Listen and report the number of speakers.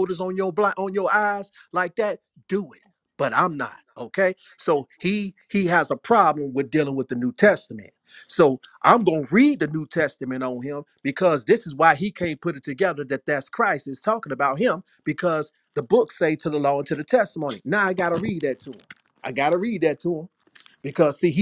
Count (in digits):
1